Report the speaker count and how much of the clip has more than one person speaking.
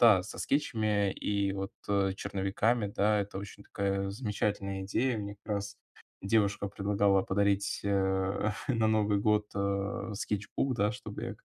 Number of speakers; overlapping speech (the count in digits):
1, no overlap